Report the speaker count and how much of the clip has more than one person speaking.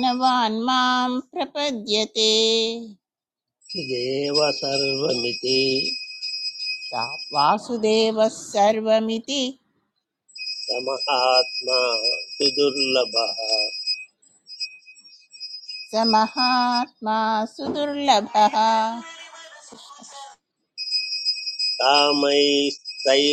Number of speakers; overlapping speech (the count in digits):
2, no overlap